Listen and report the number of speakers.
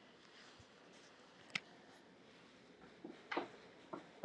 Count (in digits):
0